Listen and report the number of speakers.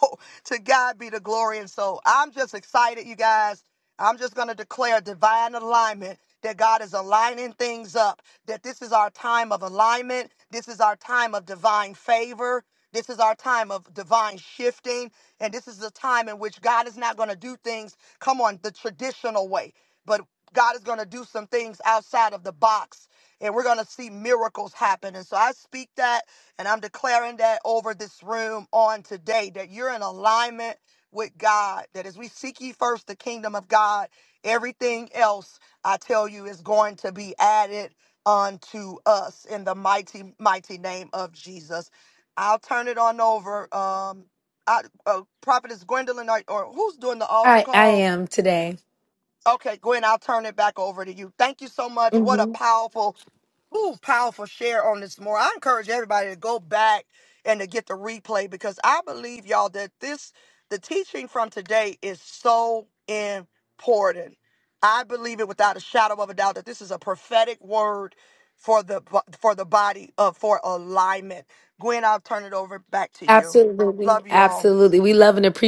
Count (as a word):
two